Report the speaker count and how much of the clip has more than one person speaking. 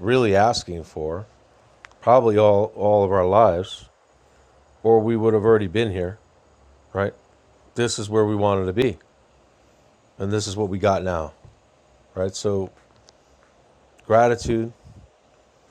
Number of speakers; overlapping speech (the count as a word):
one, no overlap